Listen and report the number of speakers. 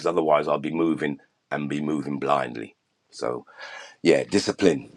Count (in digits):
1